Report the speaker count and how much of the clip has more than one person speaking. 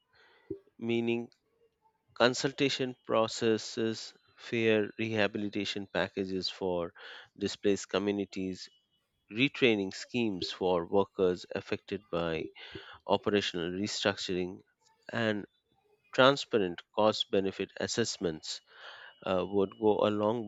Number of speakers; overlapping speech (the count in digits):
1, no overlap